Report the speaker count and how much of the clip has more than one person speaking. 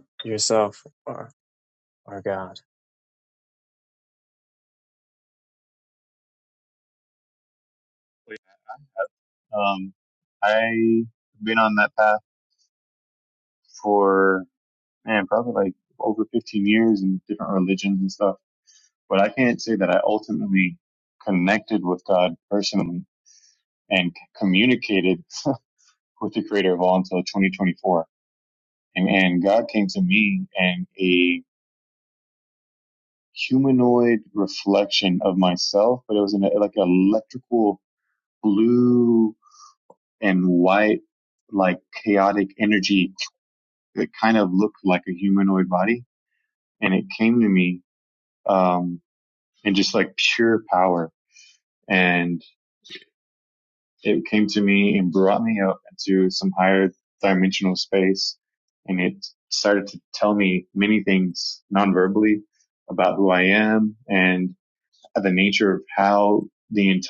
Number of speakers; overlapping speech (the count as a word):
two, no overlap